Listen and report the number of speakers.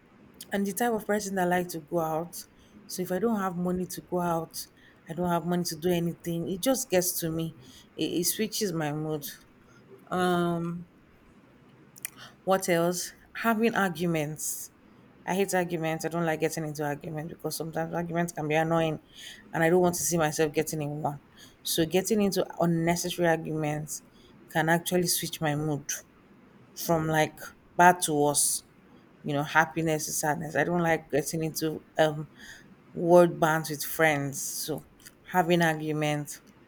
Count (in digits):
1